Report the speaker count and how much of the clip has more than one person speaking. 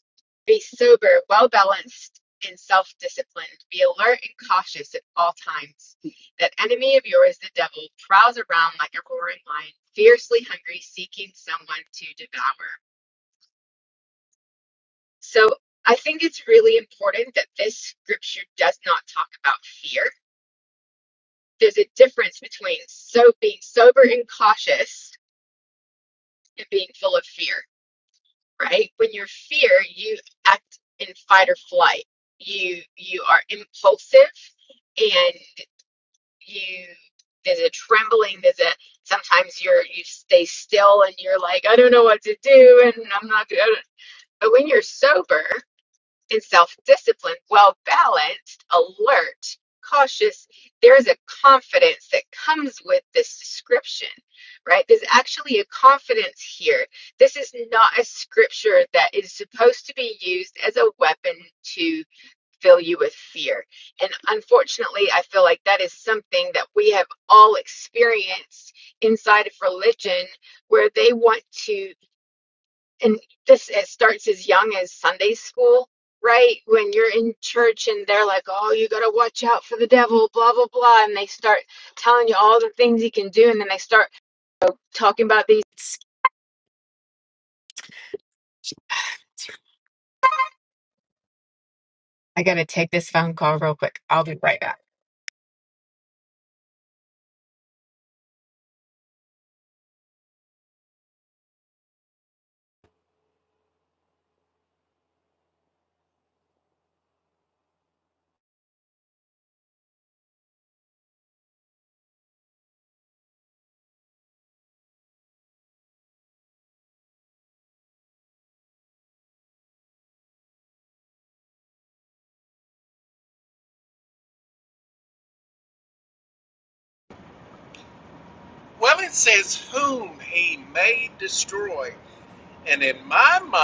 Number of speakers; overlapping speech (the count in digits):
2, no overlap